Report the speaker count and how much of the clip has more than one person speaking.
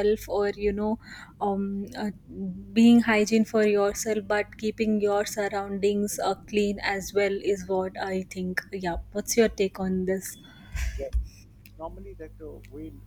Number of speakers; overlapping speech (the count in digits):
2, no overlap